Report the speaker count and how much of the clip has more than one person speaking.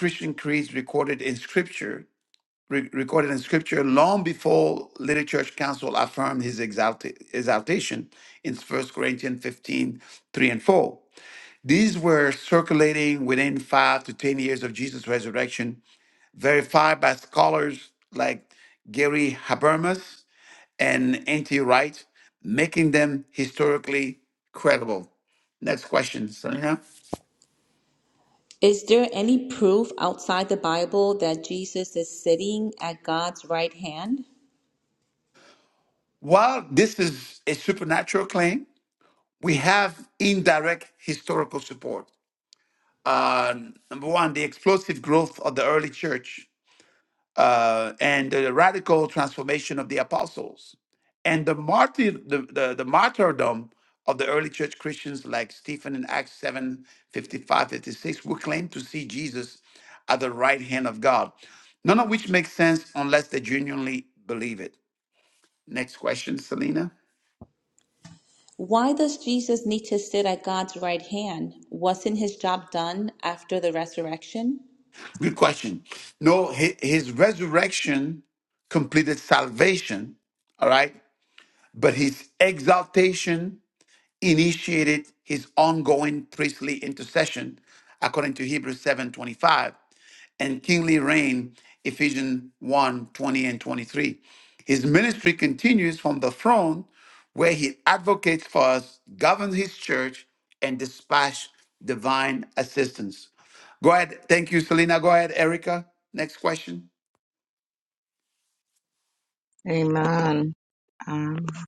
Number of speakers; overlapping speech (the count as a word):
three, no overlap